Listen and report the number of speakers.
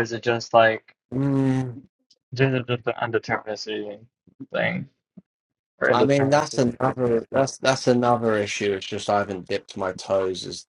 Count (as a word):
two